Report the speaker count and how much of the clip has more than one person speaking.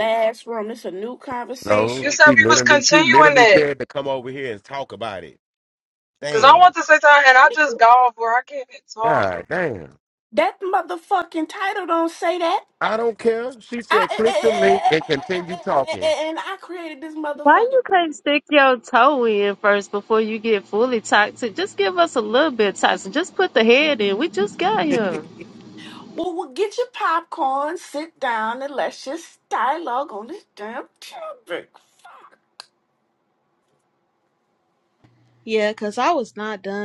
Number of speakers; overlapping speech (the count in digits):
5, about 14%